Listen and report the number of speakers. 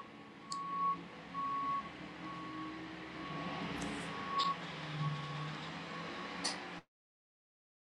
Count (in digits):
0